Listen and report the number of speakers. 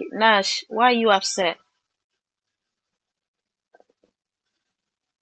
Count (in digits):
1